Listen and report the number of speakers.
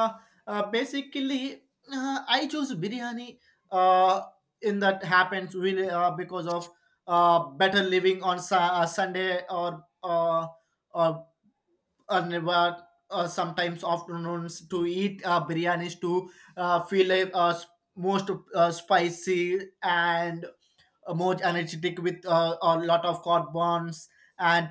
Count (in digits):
1